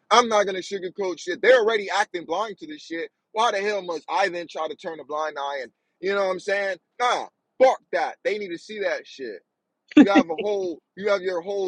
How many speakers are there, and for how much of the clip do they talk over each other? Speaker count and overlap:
one, no overlap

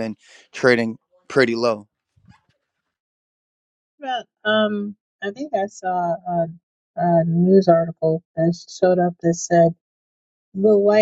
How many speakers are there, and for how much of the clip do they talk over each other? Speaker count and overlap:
two, no overlap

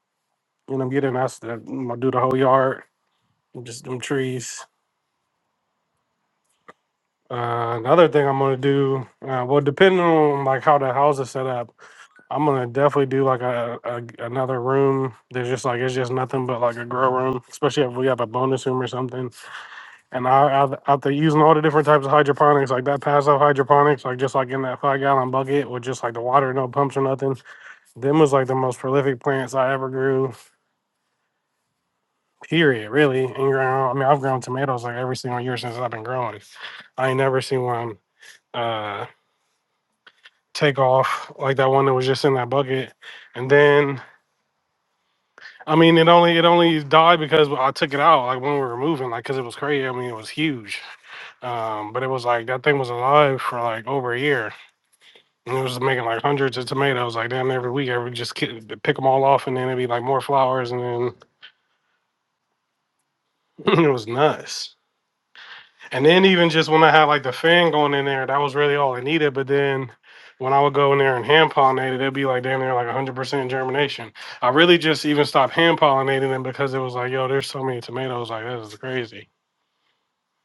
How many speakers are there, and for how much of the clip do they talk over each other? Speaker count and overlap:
one, no overlap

